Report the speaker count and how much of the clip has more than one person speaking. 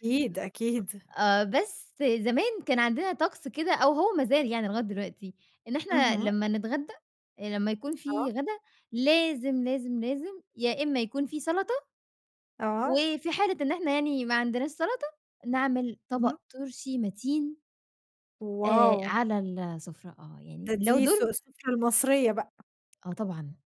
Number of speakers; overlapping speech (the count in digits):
2, about 9%